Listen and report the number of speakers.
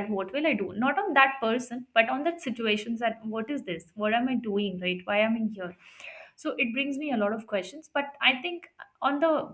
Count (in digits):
1